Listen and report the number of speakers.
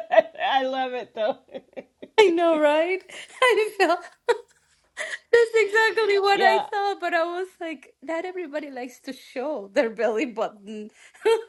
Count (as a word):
two